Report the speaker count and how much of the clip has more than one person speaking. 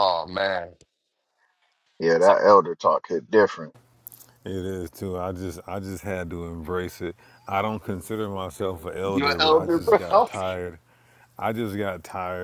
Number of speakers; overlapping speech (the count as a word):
three, about 8%